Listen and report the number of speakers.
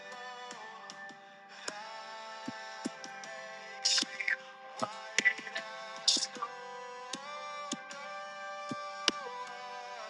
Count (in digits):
0